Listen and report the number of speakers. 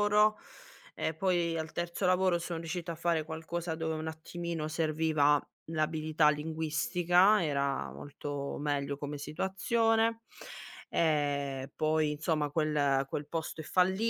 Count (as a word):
one